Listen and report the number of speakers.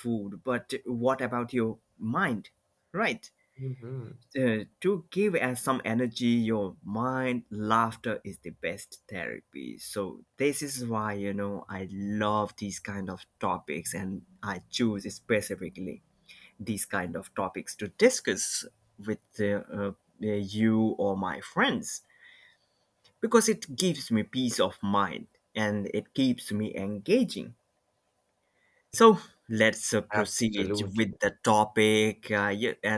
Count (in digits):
2